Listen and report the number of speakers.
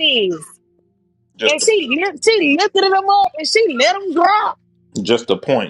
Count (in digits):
2